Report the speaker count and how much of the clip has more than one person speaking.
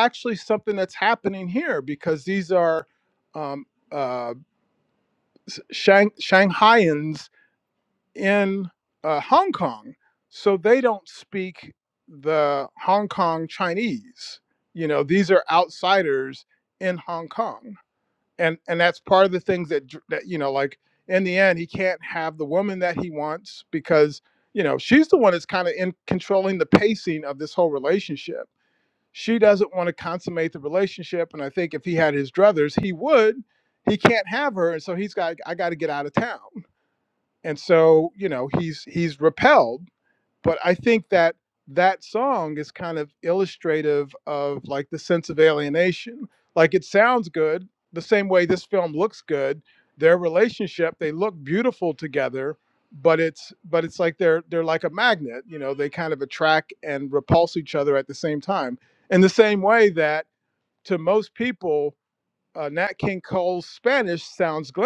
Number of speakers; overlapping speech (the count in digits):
1, no overlap